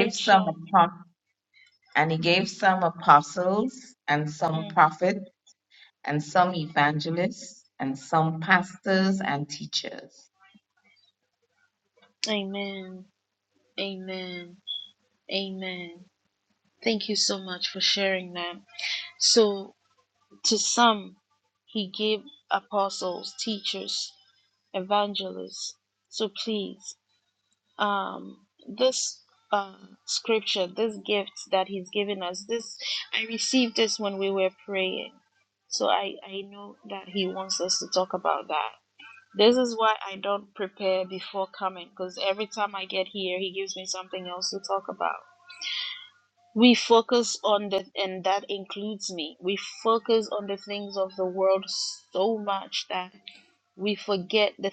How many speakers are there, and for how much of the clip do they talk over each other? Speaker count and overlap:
two, about 1%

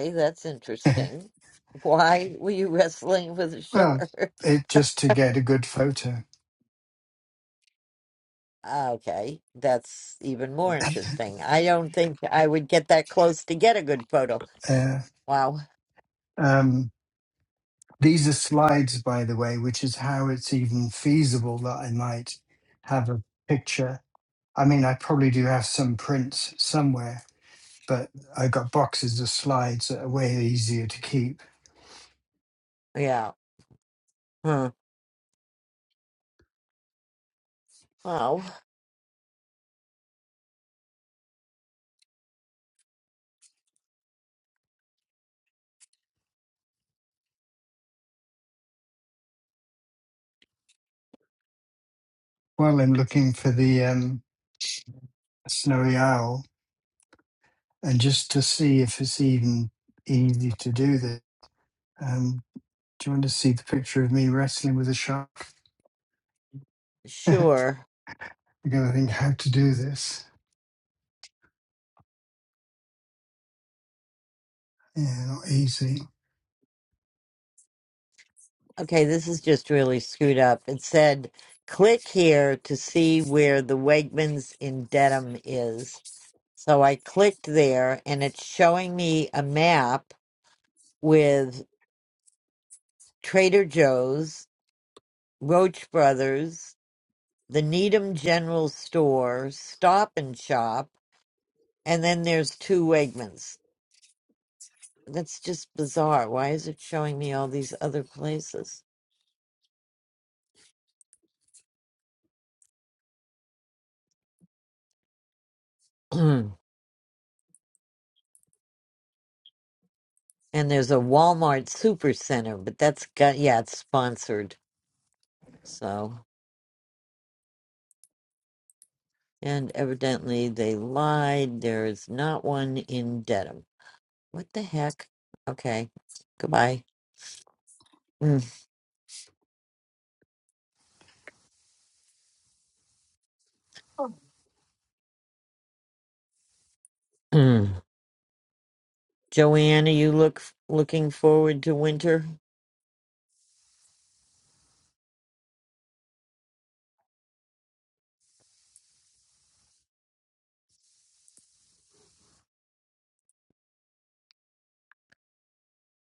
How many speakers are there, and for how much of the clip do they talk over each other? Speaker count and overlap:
two, under 1%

